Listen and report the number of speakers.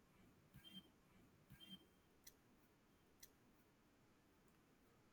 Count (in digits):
0